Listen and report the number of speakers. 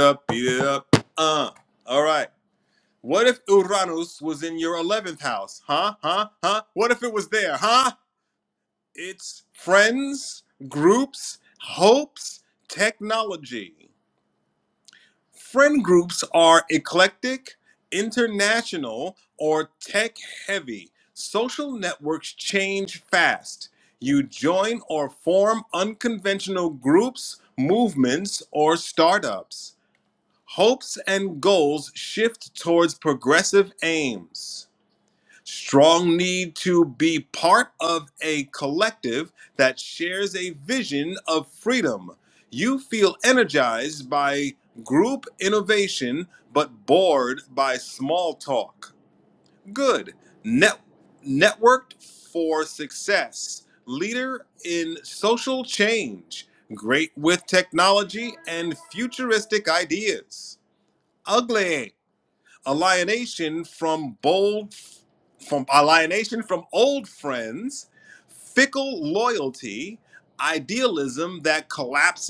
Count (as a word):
one